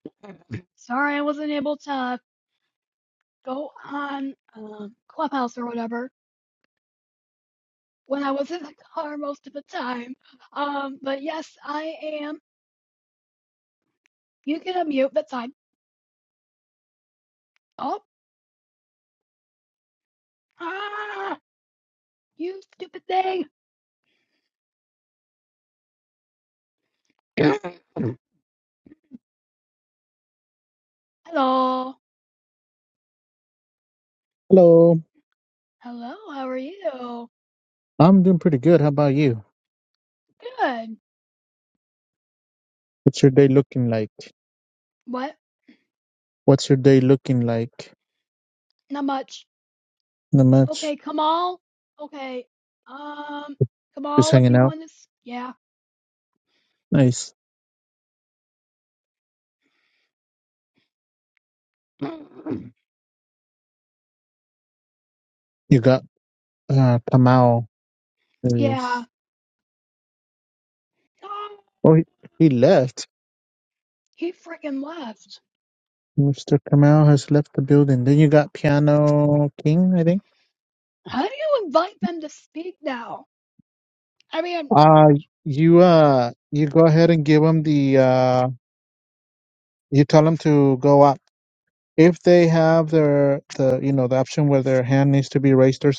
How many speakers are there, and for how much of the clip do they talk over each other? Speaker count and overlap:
two, about 1%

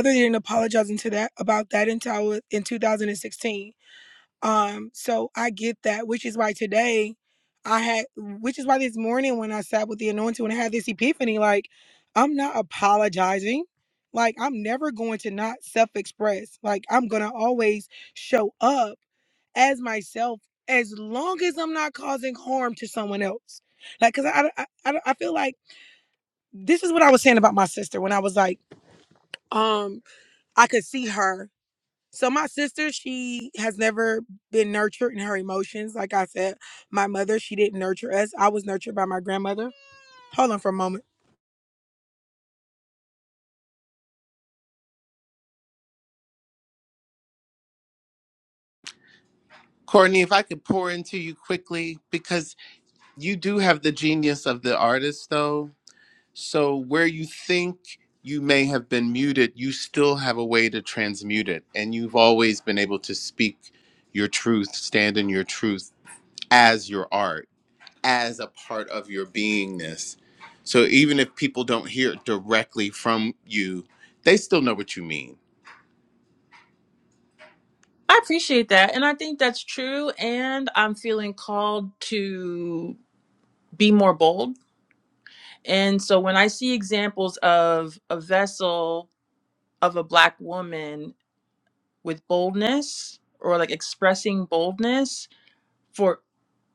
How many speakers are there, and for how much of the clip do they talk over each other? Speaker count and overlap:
three, no overlap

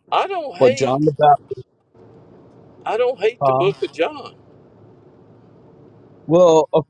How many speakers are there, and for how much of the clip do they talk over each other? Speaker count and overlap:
two, about 10%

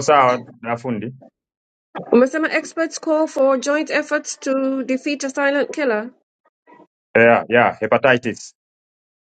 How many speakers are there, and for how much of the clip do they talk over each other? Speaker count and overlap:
two, no overlap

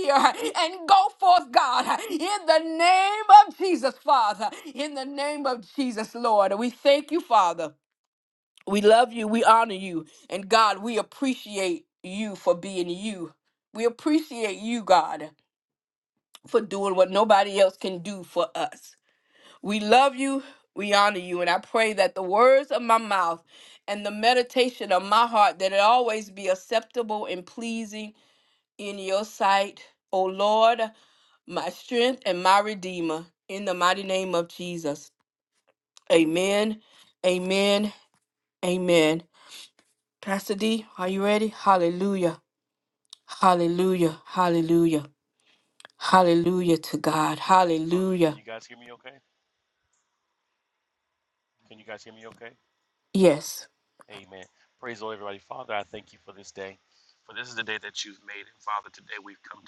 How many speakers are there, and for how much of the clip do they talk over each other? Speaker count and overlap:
two, about 1%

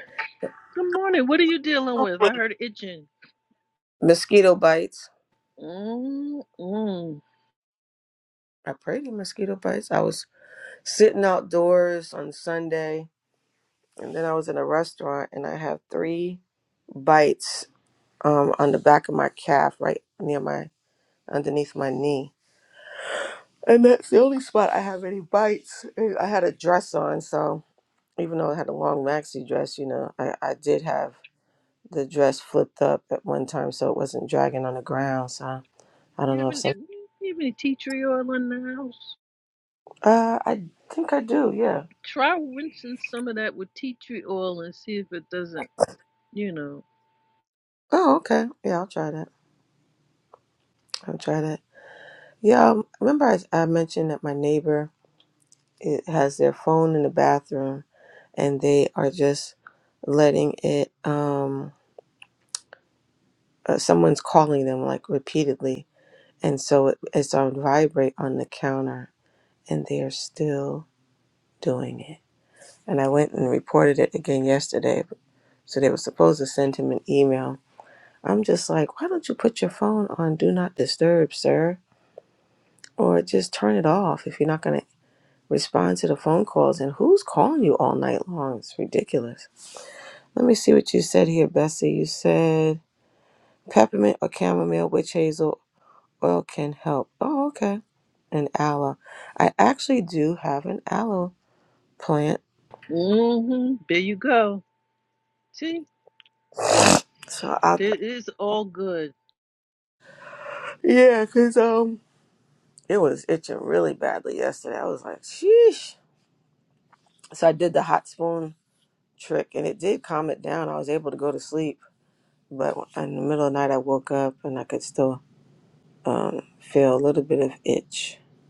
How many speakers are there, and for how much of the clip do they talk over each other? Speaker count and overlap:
two, under 1%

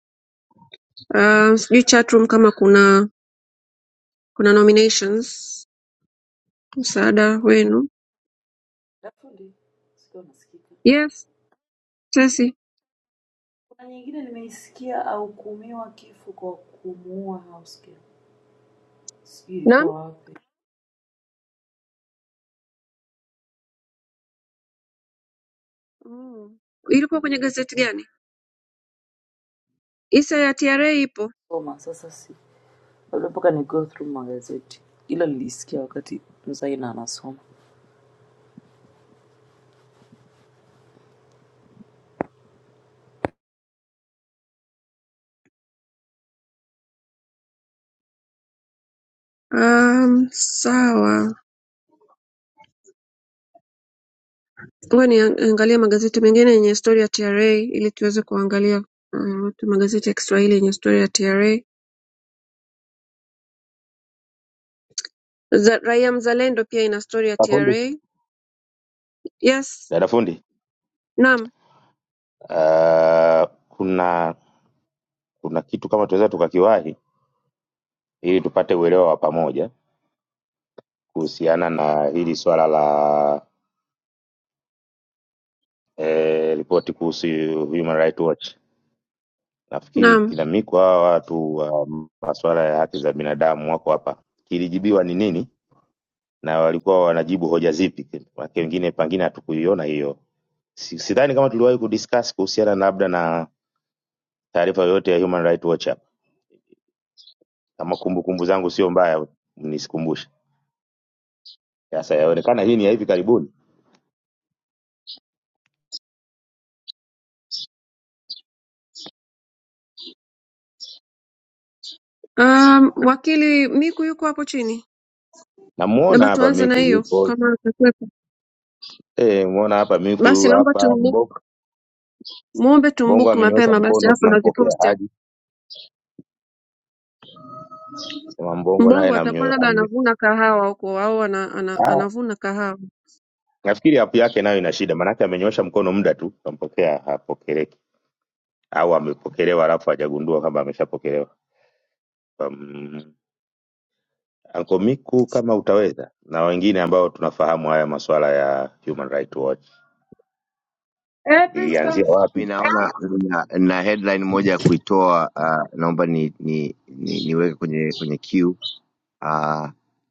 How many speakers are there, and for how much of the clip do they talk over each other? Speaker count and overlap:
four, about 4%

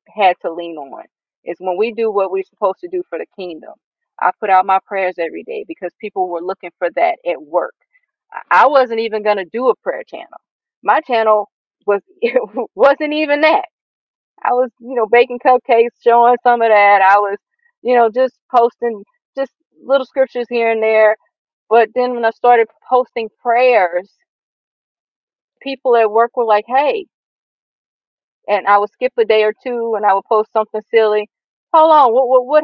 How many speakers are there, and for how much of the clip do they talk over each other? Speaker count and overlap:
one, no overlap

